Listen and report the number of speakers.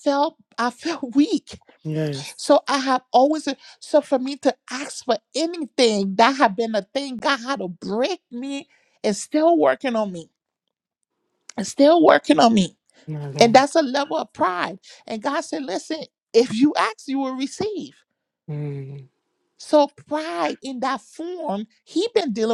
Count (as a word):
two